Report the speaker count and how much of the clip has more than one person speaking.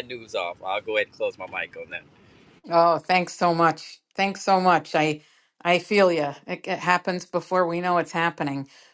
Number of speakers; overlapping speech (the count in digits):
2, no overlap